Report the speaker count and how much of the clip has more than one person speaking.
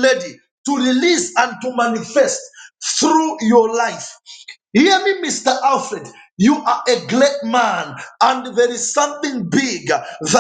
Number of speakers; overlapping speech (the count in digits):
1, no overlap